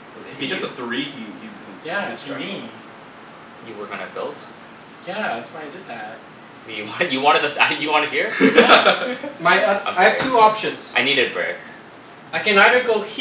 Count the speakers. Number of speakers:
4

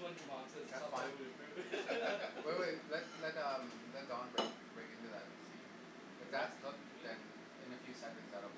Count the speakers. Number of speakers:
2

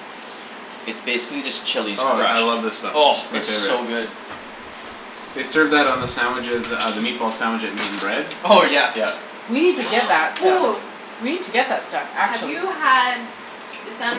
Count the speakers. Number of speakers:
4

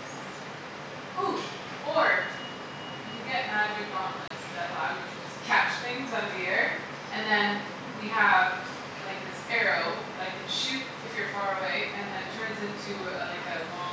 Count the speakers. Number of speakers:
1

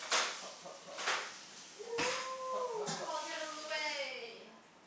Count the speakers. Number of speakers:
2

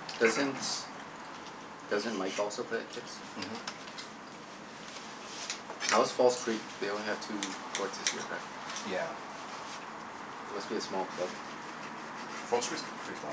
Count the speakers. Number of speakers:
2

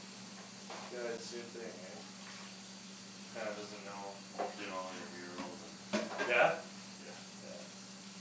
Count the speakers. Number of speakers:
2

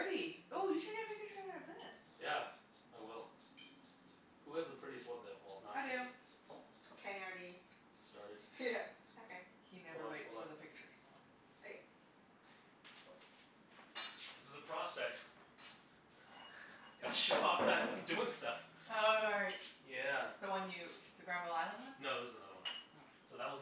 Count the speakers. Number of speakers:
3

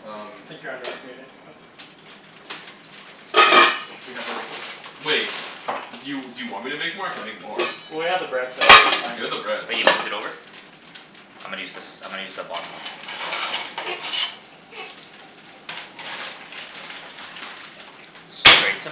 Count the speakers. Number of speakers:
3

